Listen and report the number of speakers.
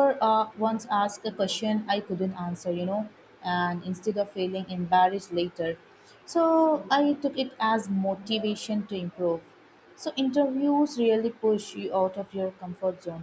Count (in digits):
1